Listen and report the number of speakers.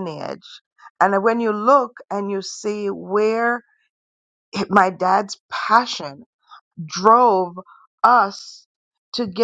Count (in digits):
1